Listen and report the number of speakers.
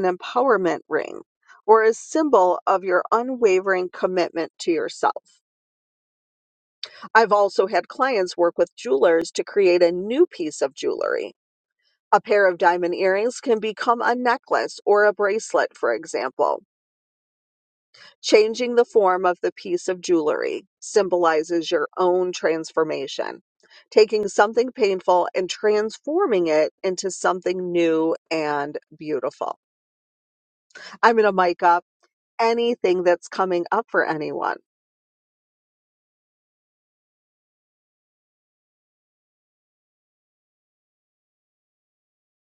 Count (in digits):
1